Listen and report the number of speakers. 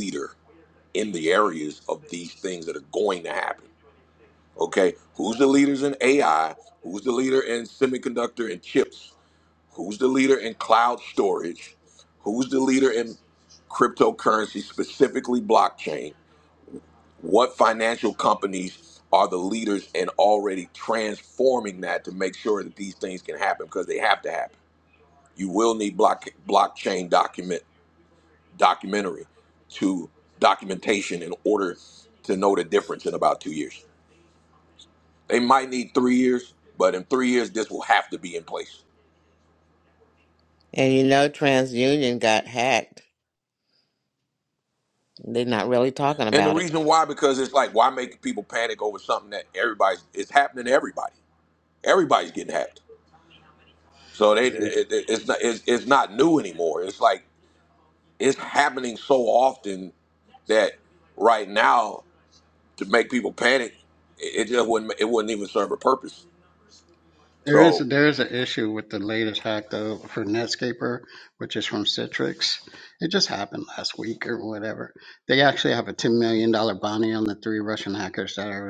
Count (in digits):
3